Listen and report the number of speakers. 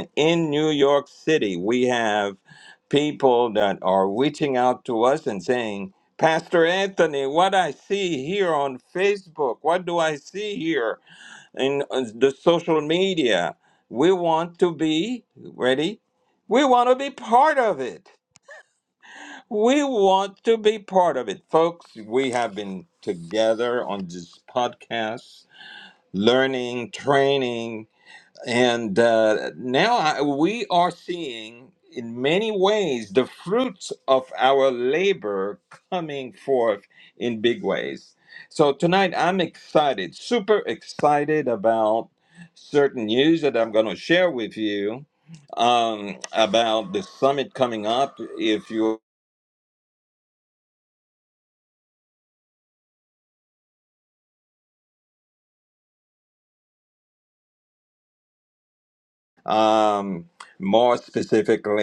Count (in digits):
1